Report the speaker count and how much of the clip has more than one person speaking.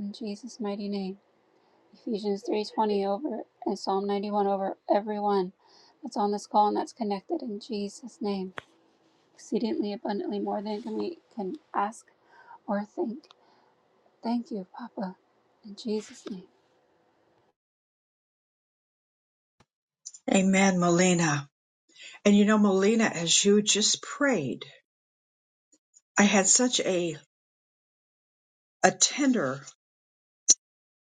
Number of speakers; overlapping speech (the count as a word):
two, no overlap